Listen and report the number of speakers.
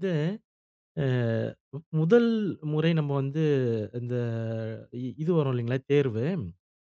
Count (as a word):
one